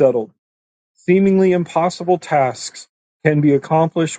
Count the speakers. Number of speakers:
one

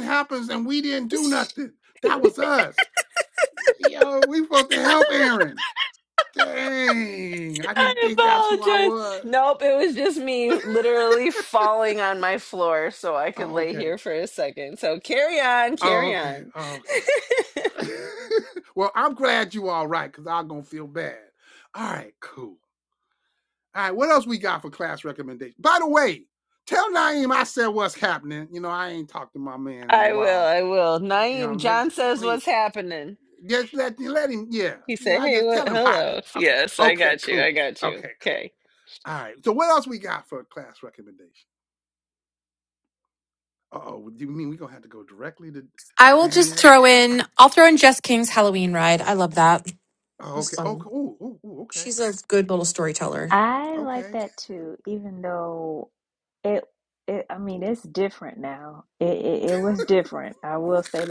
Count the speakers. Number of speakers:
four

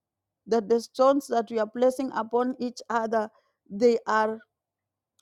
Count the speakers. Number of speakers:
one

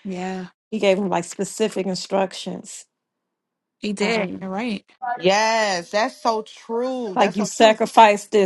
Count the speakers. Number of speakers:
three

